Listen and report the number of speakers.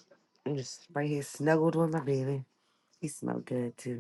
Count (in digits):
1